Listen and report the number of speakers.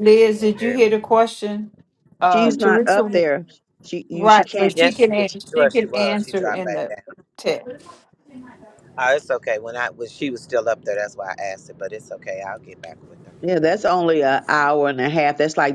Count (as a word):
three